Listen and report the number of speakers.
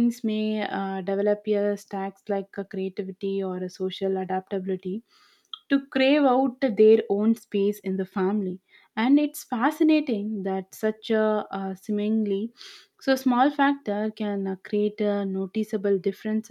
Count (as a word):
one